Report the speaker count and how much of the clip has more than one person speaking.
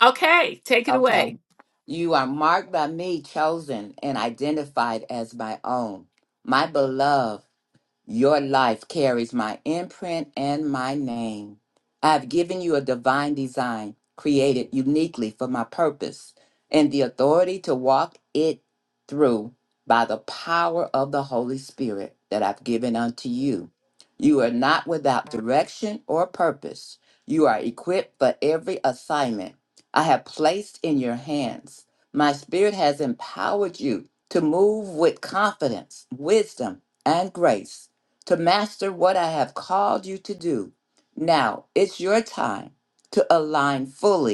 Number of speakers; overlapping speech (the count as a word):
two, about 1%